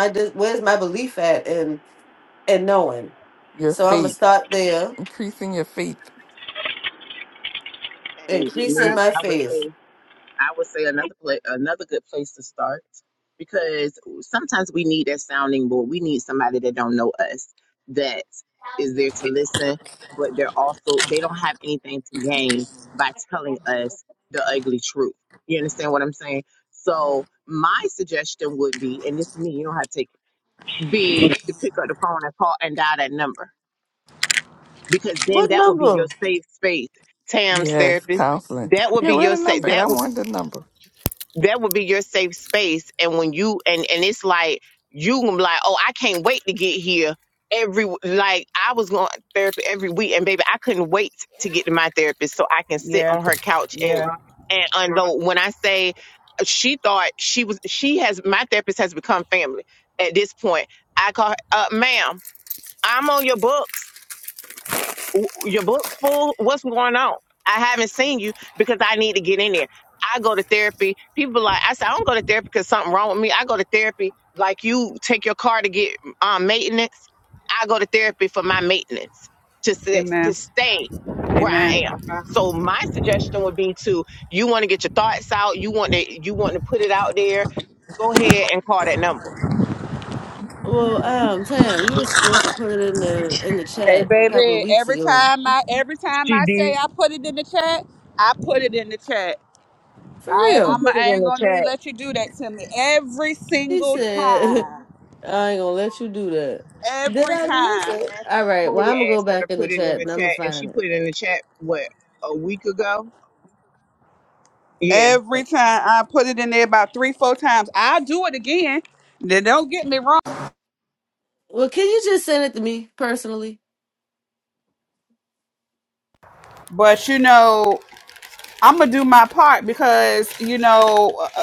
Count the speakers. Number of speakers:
4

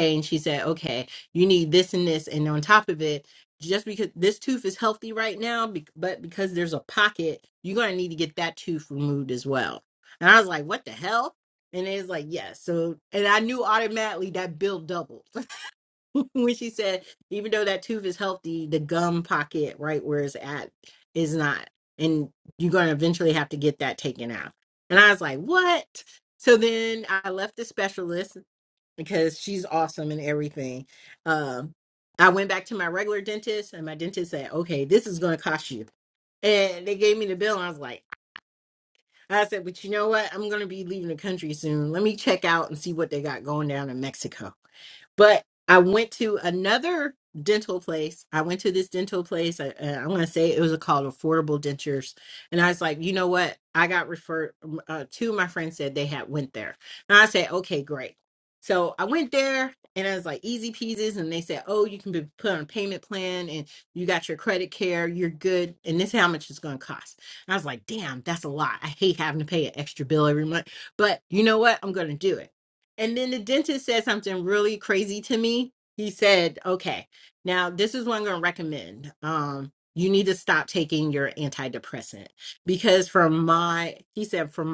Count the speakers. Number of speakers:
1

